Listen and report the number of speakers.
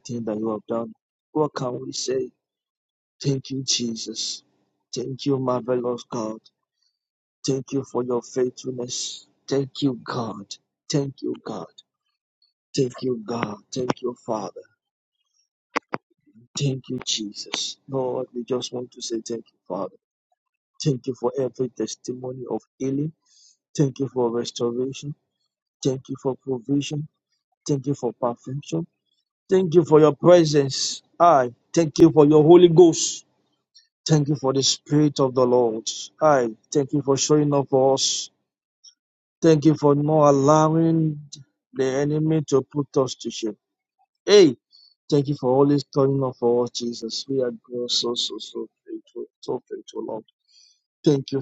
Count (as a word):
one